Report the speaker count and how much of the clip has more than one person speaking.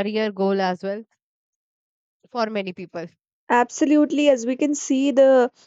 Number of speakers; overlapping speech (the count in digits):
2, no overlap